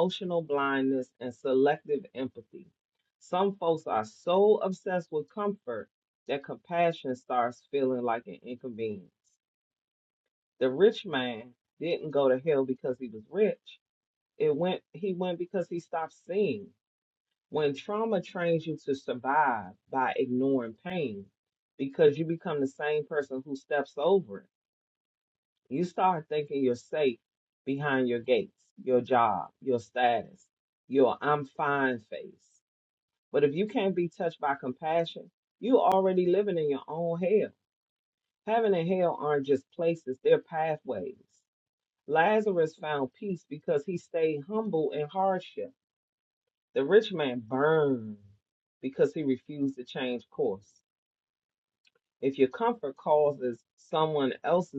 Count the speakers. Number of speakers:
1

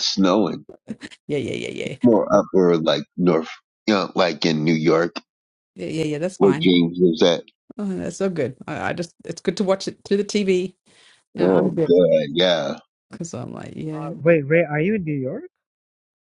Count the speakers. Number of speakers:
3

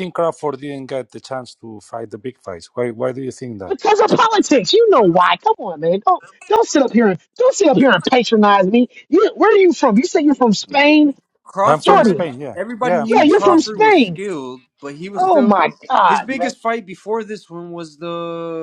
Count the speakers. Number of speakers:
3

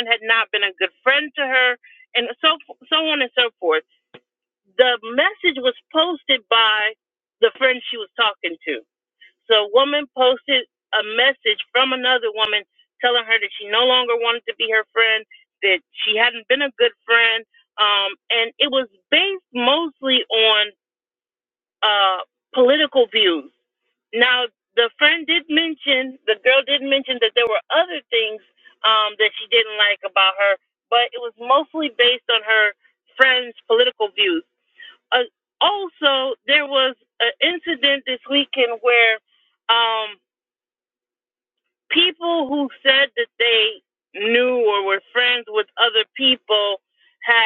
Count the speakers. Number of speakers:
1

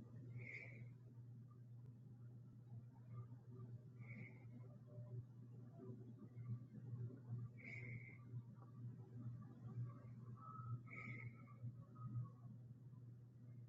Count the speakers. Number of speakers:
0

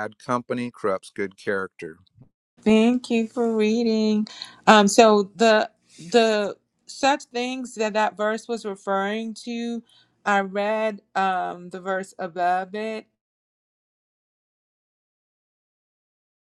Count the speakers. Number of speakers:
2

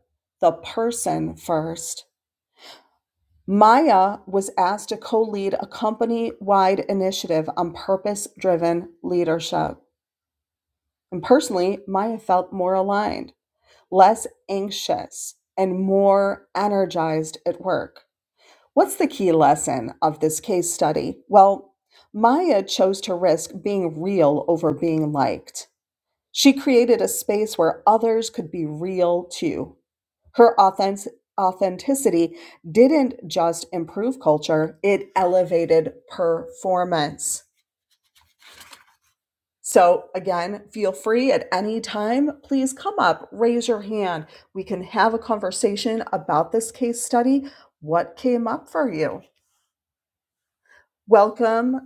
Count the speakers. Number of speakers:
1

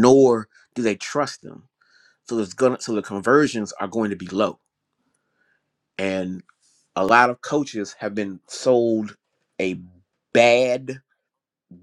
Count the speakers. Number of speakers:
1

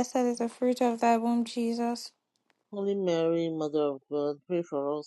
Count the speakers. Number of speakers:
2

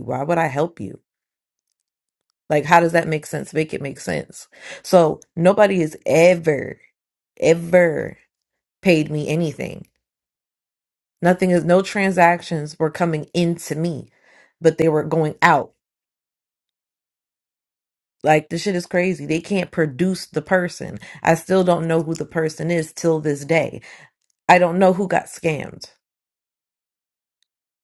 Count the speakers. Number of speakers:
1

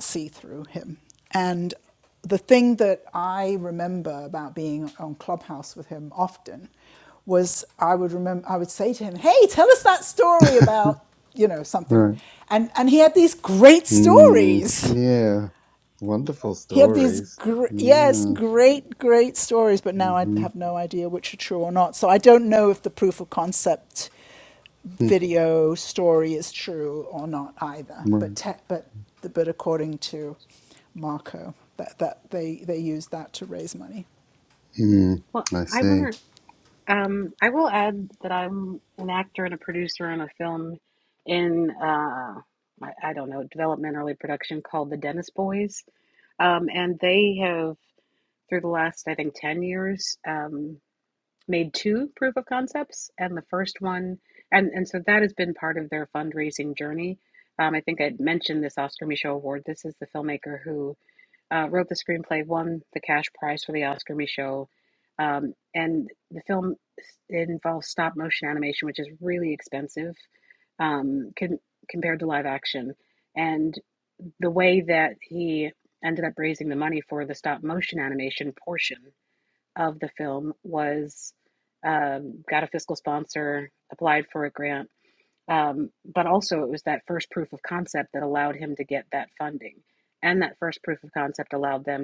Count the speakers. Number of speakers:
3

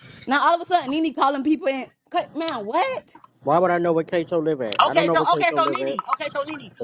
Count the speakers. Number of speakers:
3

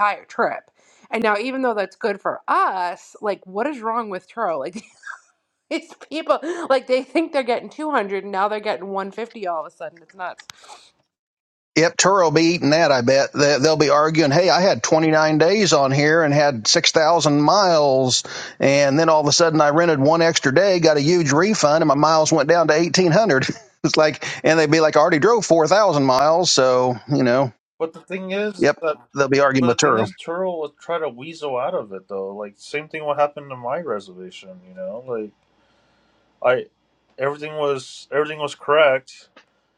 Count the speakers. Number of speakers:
3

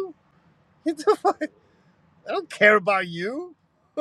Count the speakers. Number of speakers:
1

